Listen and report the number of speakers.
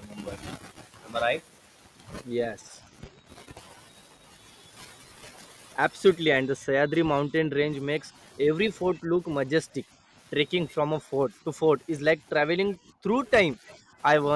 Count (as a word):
two